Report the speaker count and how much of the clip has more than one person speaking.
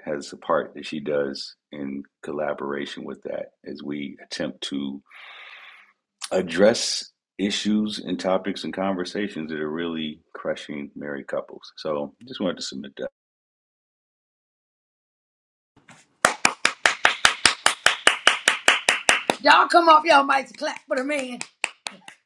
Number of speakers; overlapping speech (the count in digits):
2, no overlap